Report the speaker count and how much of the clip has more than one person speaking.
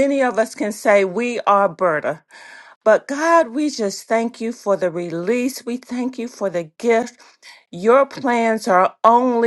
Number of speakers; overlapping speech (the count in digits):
1, no overlap